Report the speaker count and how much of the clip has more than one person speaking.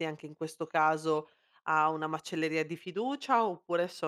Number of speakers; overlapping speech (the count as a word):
one, no overlap